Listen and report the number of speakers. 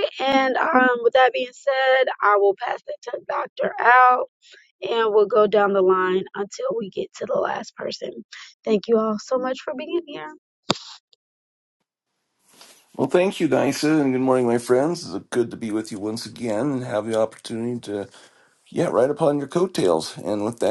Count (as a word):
two